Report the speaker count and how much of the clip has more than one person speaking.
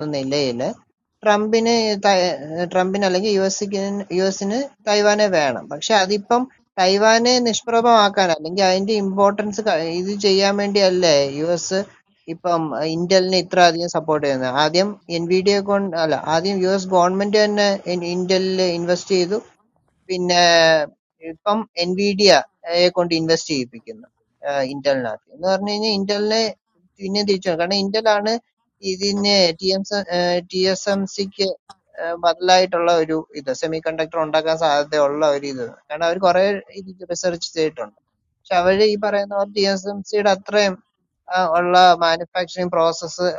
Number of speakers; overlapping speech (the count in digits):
1, no overlap